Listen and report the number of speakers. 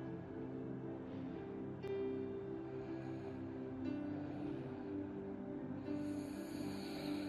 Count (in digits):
0